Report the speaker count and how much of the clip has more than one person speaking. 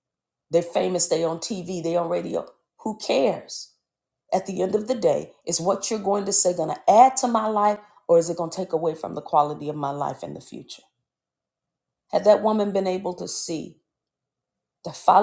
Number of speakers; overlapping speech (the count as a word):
one, no overlap